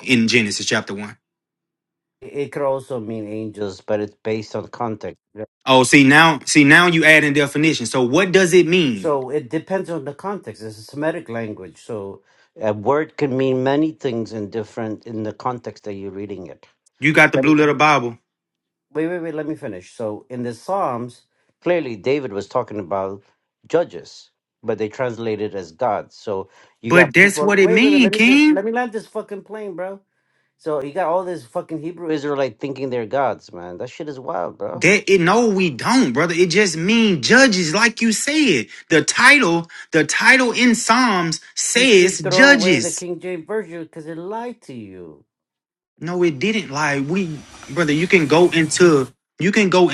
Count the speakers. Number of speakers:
2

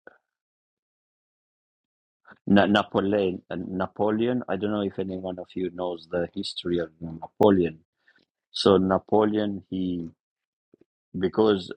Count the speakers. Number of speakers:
1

